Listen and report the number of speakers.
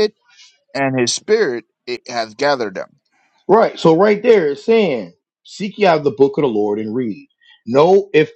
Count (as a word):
two